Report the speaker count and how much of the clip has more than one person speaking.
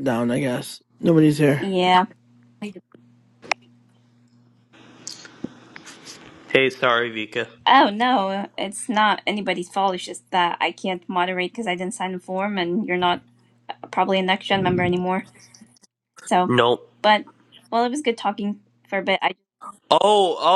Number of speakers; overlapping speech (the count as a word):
three, under 1%